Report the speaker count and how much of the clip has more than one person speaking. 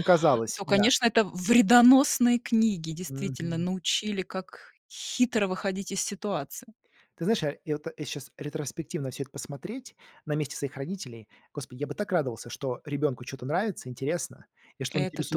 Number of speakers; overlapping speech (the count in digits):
2, about 8%